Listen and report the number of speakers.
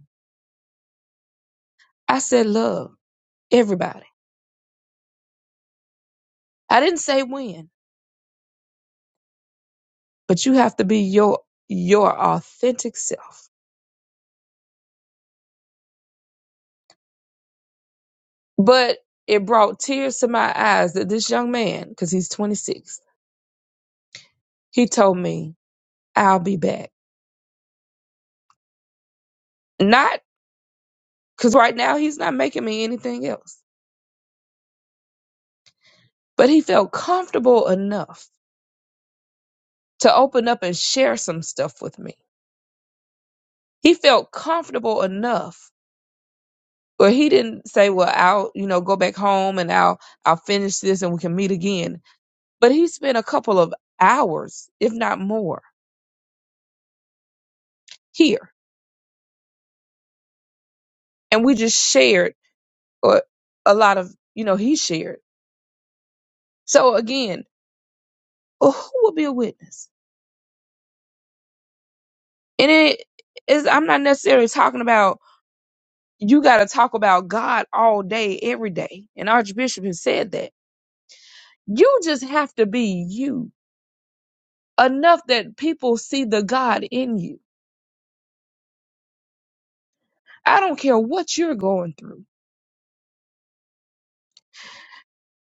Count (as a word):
one